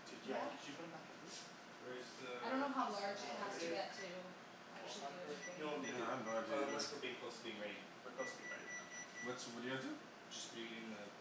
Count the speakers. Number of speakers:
four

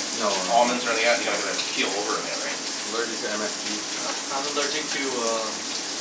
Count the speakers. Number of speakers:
three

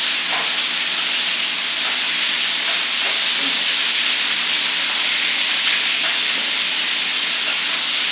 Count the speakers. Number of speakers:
zero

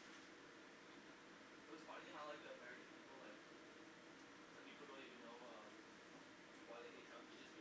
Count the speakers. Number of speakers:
one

